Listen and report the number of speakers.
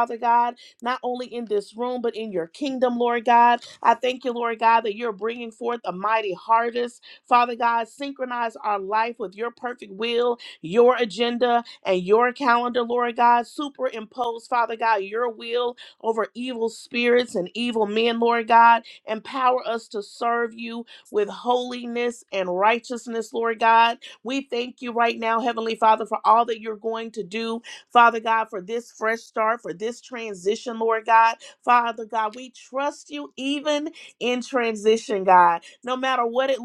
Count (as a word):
one